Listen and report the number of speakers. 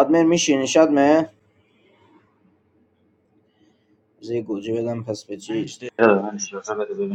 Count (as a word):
two